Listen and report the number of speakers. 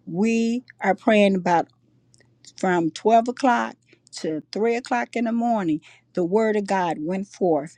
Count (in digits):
1